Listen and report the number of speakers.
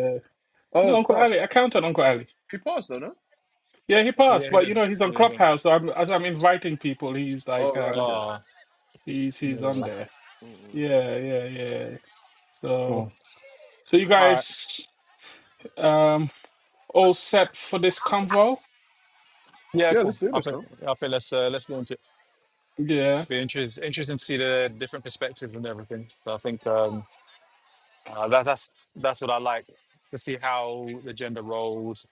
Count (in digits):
3